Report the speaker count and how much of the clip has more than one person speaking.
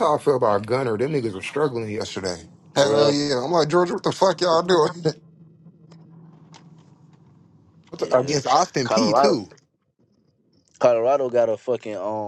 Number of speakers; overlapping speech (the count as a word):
two, about 10%